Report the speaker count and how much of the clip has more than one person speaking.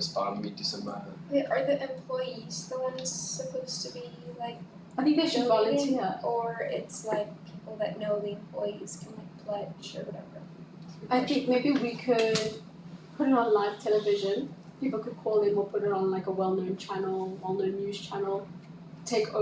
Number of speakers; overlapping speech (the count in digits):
3, about 6%